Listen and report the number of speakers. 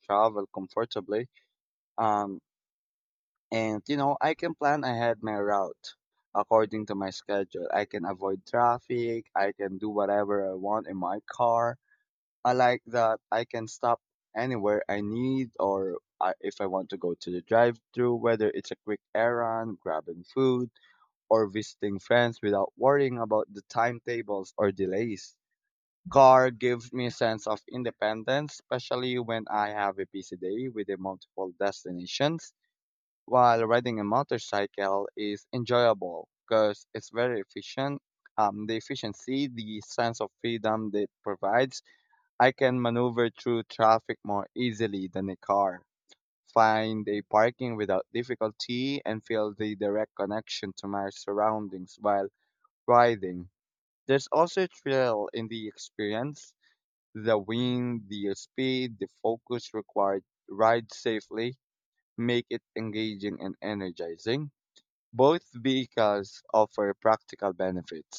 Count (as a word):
one